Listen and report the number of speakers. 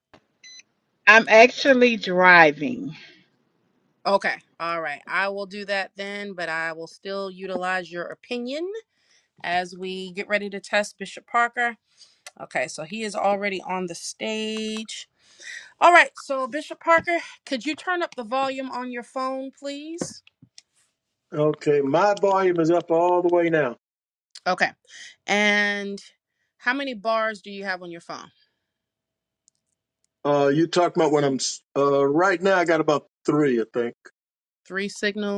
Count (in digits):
3